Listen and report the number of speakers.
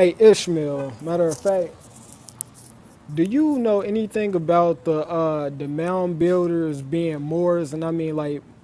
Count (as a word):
one